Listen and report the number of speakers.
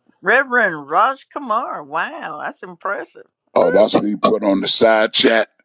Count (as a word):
two